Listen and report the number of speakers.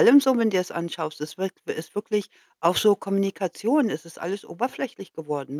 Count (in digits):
1